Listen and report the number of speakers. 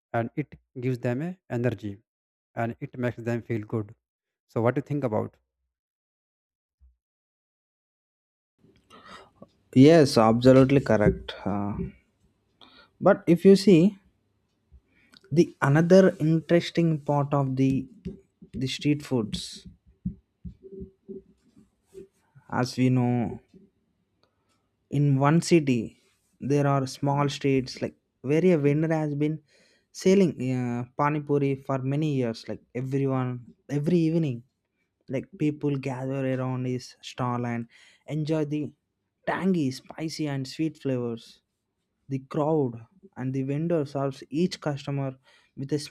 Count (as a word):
two